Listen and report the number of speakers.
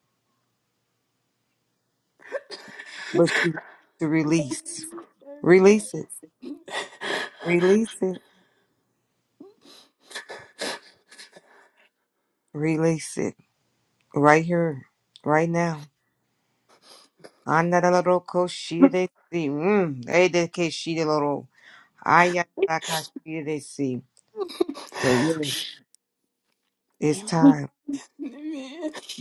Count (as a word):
two